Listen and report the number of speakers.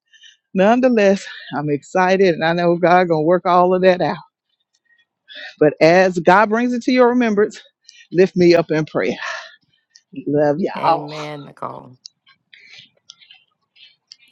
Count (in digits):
2